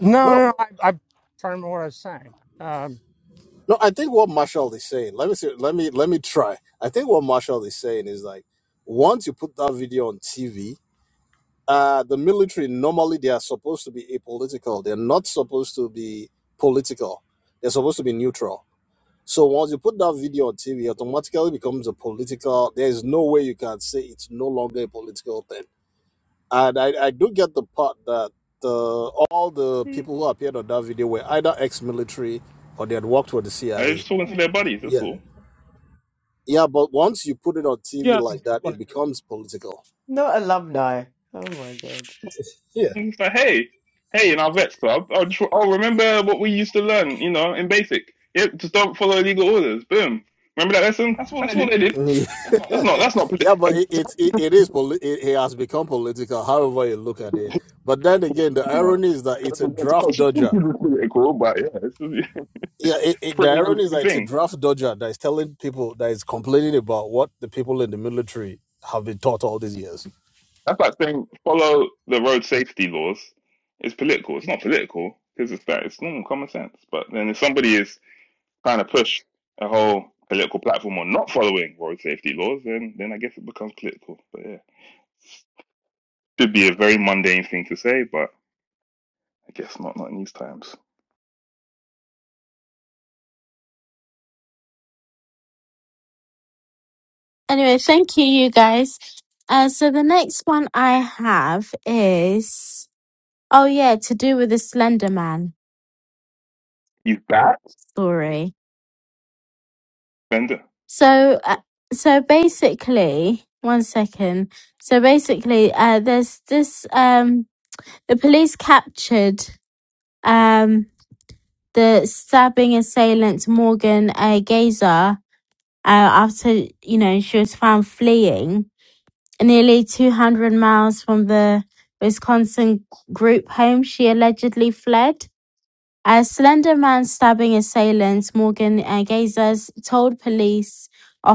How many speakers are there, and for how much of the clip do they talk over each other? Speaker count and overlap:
five, about 3%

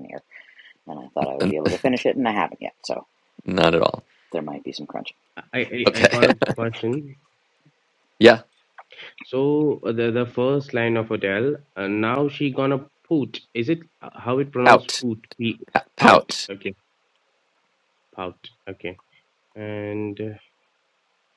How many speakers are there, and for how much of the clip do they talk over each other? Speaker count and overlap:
three, about 7%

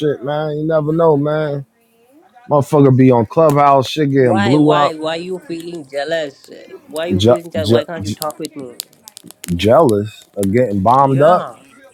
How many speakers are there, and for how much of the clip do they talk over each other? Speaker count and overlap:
two, about 18%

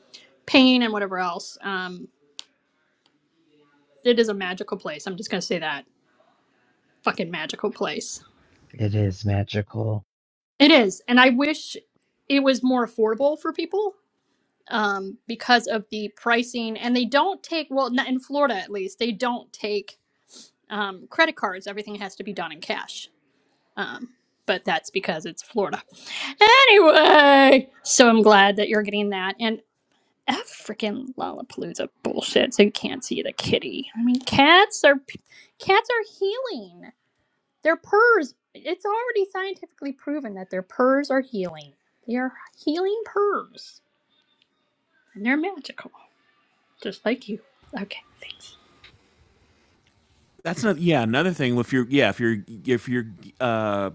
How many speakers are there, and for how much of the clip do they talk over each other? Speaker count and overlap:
three, no overlap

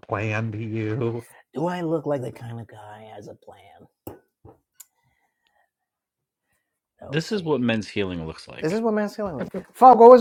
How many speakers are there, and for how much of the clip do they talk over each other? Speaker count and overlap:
three, about 5%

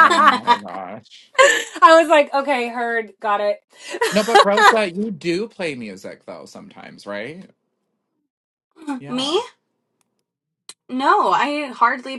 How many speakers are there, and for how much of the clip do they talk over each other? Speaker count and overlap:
three, about 2%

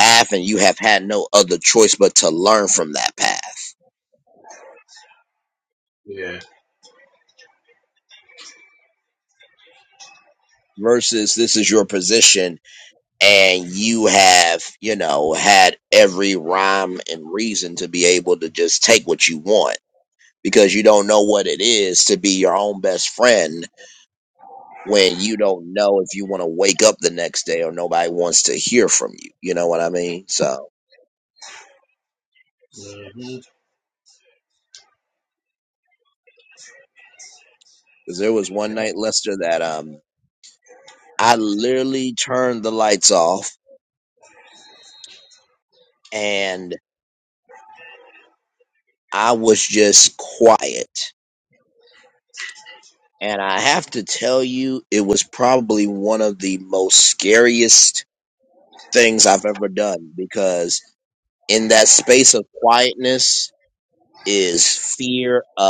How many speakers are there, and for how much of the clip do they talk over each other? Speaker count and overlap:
two, under 1%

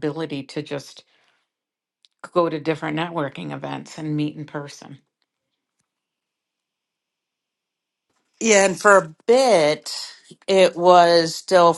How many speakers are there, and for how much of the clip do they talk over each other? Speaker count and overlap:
two, no overlap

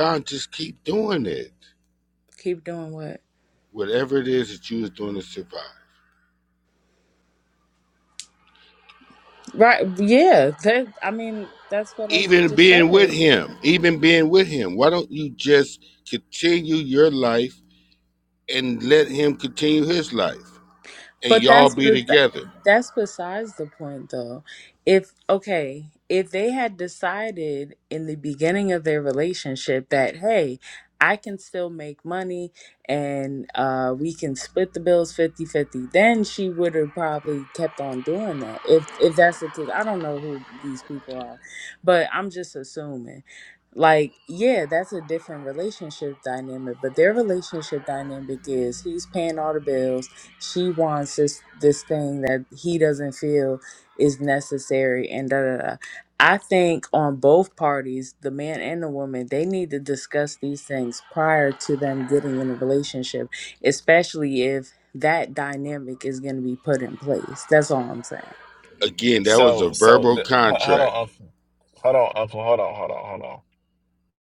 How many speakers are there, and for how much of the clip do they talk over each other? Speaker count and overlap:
three, about 5%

